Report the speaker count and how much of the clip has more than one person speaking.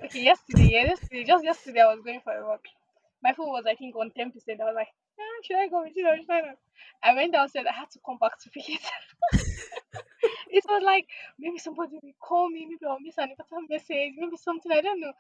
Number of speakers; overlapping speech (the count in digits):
1, no overlap